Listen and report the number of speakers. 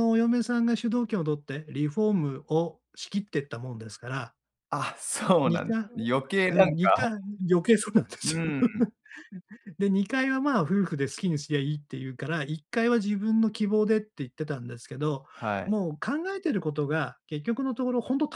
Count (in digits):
2